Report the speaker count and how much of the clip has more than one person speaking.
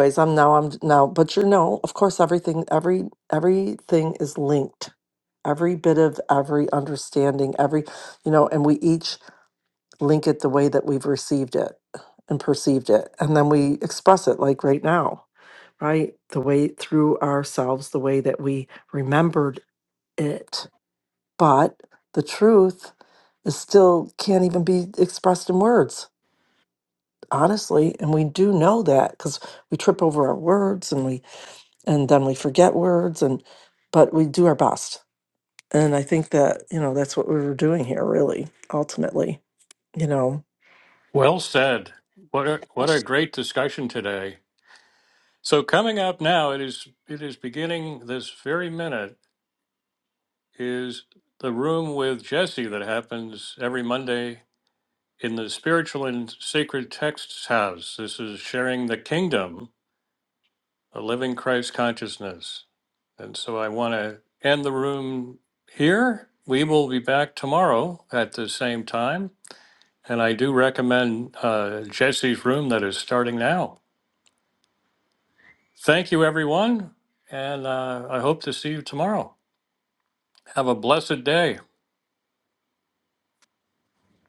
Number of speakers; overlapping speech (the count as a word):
two, no overlap